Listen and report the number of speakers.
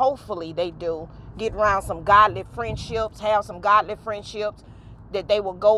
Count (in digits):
1